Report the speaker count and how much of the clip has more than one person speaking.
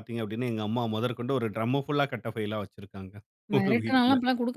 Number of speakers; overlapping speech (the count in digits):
2, about 14%